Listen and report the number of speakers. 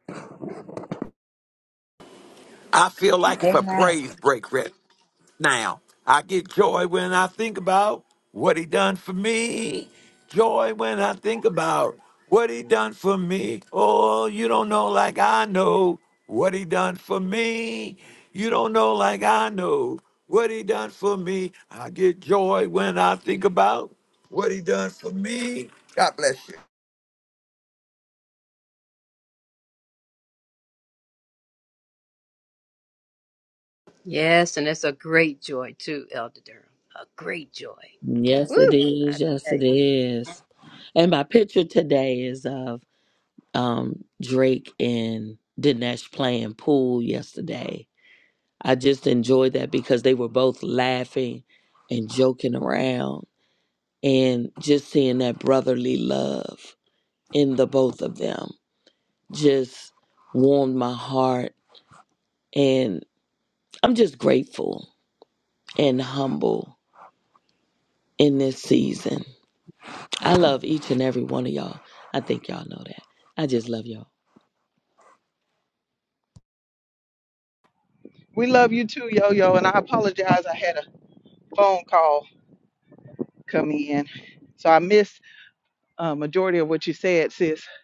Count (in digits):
4